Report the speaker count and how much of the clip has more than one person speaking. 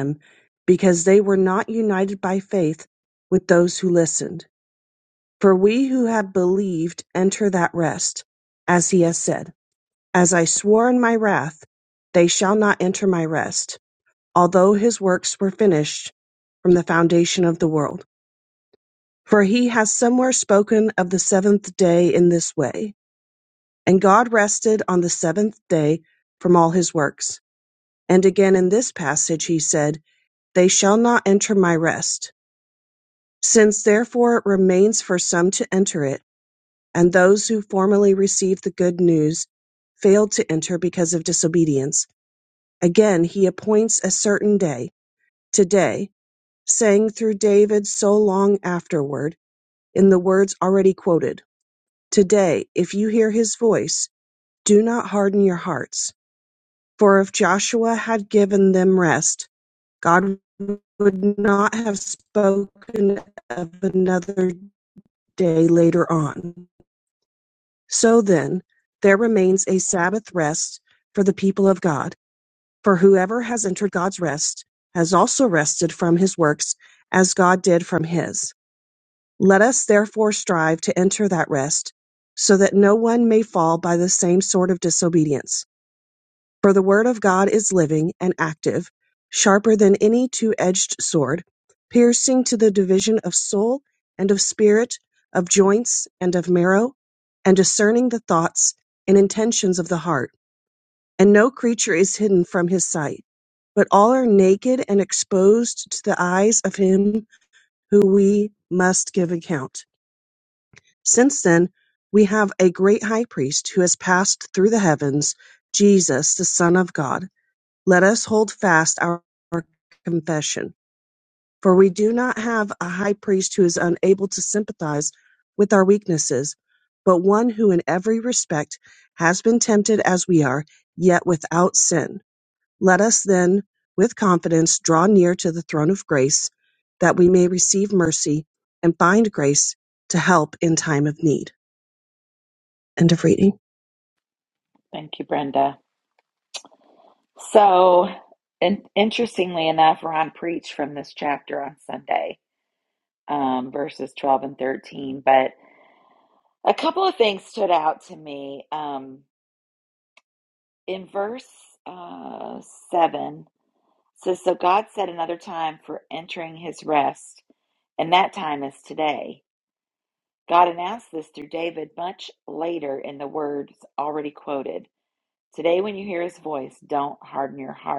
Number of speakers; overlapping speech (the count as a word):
two, no overlap